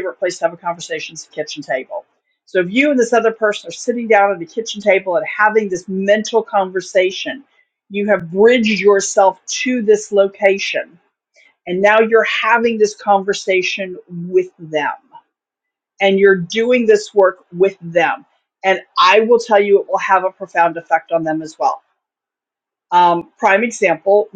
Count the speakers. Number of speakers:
1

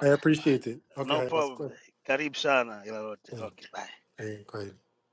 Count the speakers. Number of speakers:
2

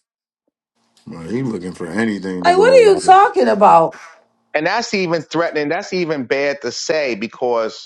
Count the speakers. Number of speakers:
3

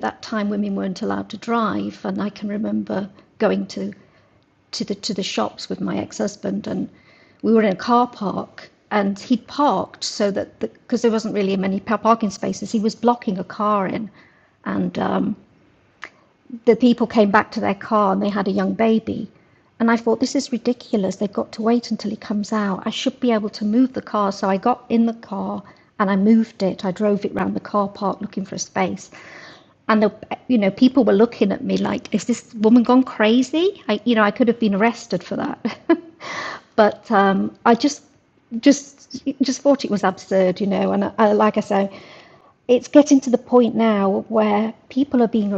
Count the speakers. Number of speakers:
1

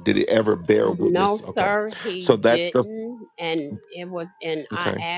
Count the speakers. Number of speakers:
2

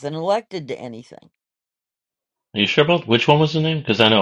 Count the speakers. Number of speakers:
2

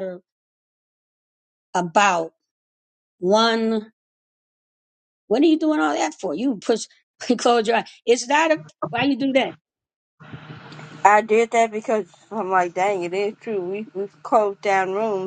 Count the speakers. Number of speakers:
2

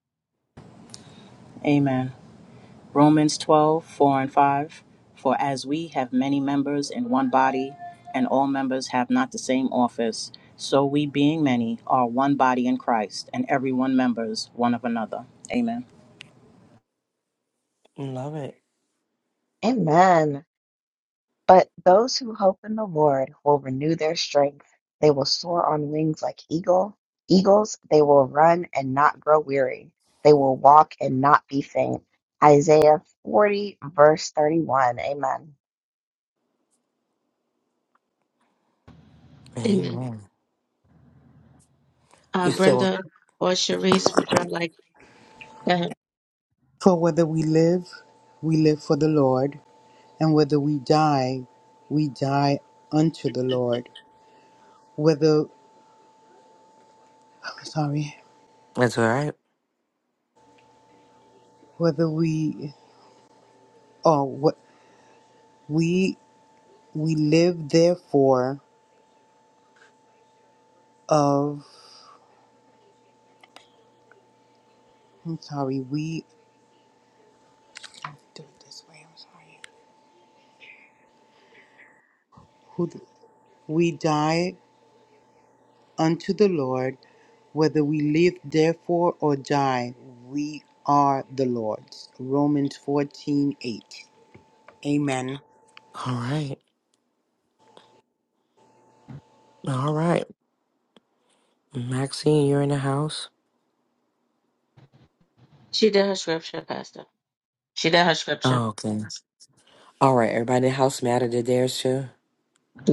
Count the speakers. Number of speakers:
5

